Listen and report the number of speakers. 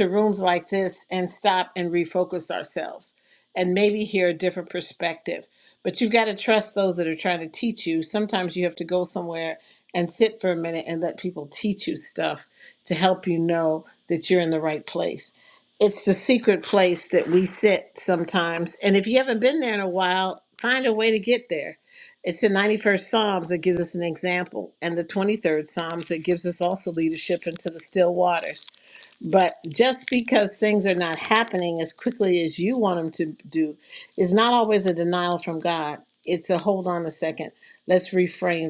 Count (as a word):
one